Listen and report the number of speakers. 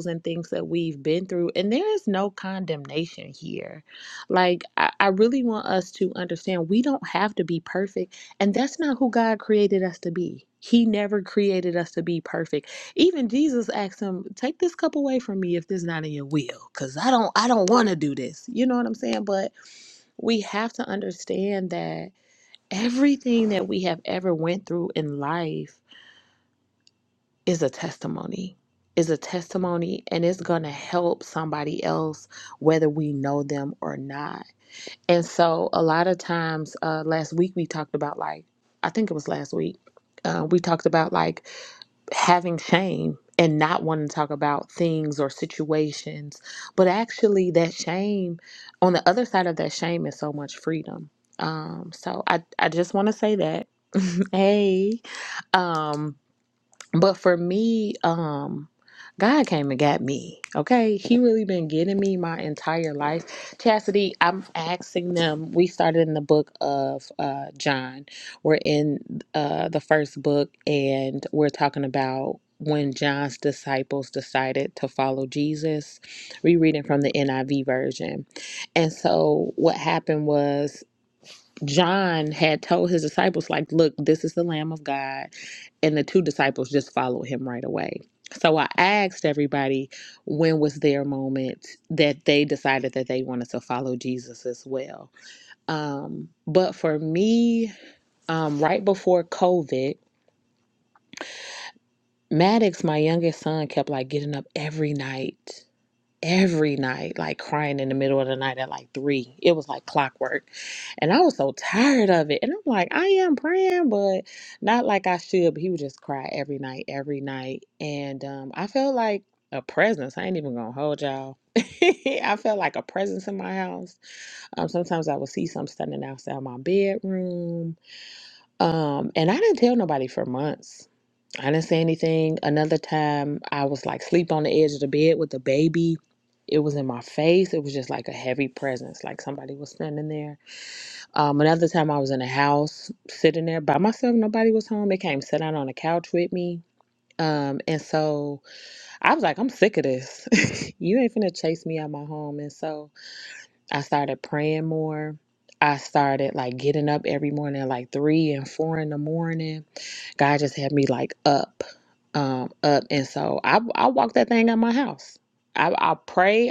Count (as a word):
one